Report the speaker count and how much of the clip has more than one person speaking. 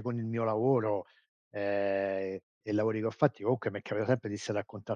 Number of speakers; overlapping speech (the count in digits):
1, no overlap